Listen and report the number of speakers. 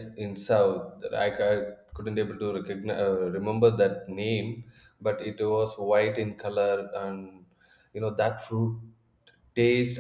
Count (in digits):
1